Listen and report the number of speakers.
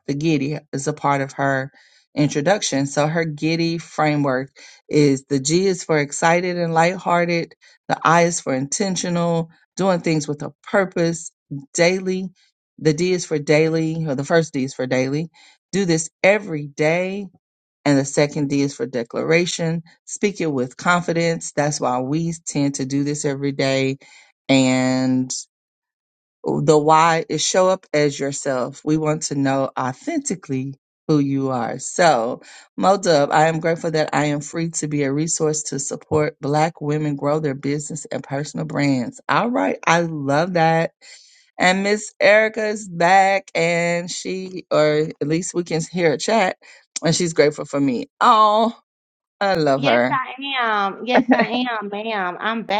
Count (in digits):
2